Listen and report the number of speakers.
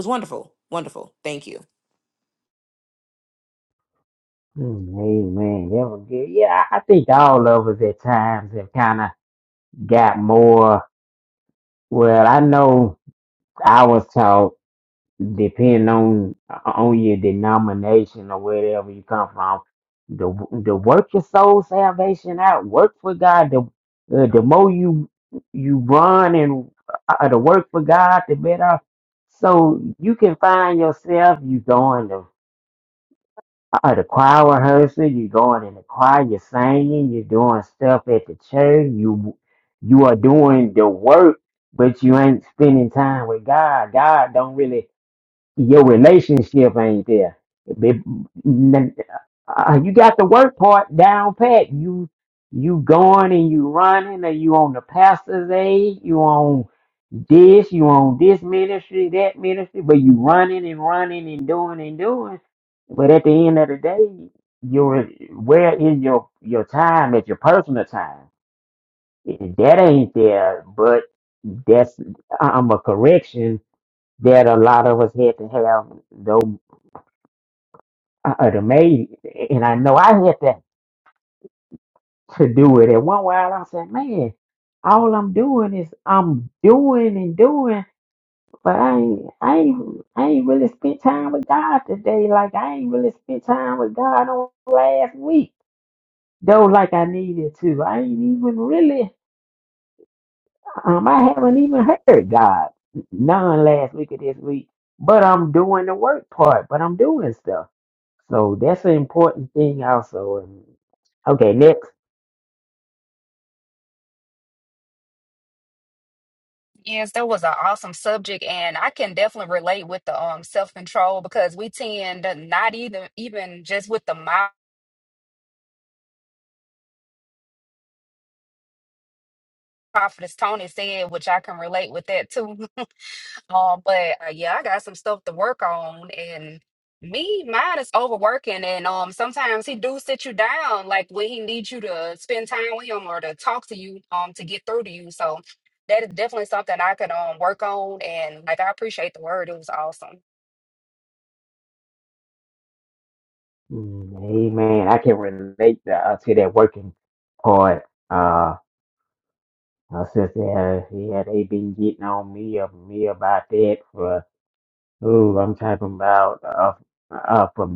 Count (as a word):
three